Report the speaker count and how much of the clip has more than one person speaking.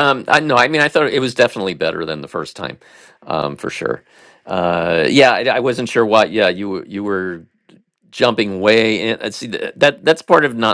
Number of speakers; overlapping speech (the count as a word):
one, no overlap